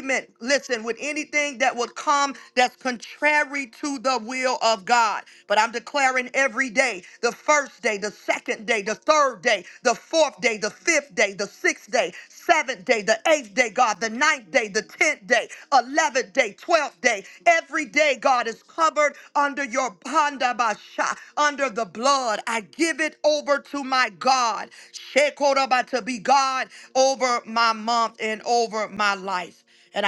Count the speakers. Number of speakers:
1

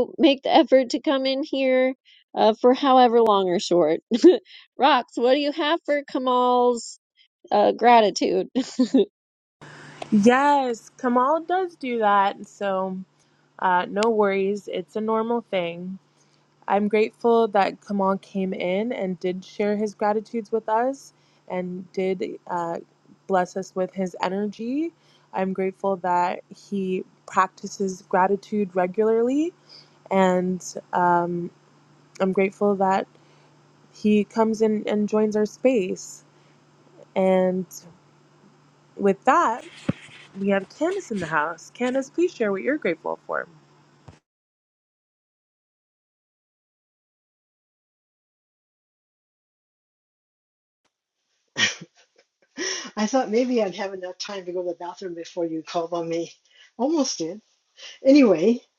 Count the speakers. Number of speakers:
3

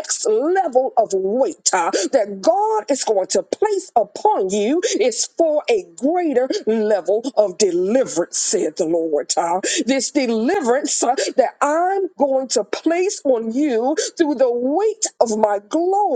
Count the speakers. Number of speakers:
1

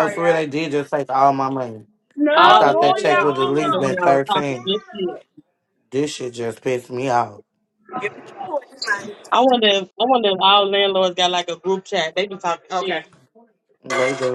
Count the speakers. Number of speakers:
3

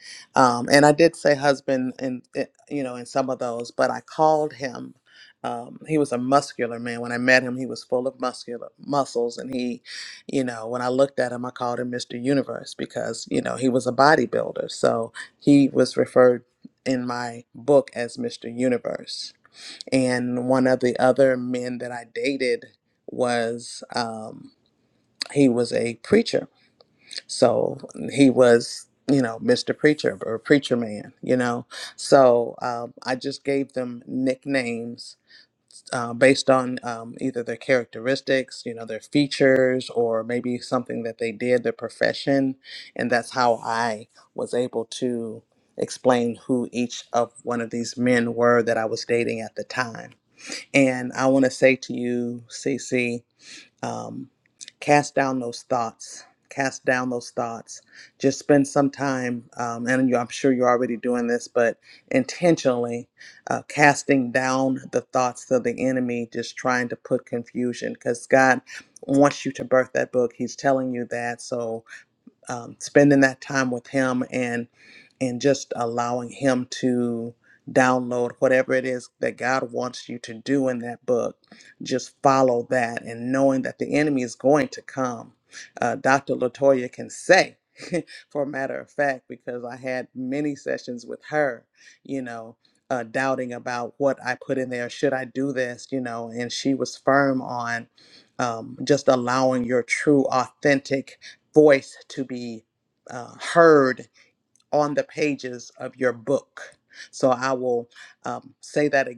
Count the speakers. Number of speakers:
1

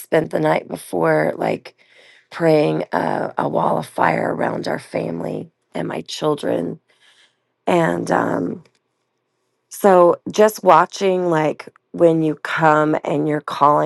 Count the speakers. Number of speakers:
1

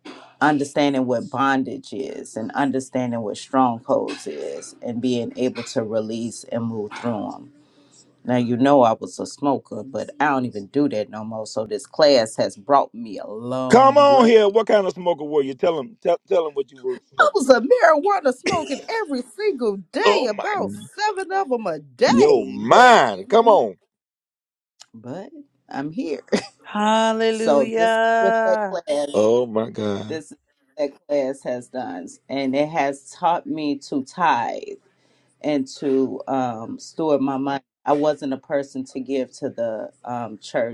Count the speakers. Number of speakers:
3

